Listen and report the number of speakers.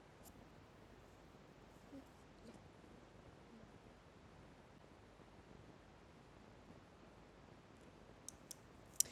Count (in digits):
0